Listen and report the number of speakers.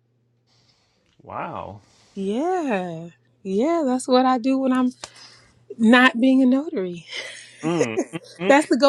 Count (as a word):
two